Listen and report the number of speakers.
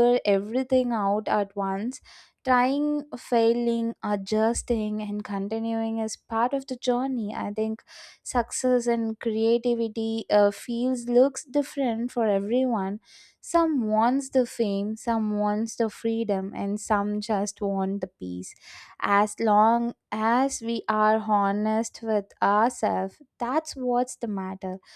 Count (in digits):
1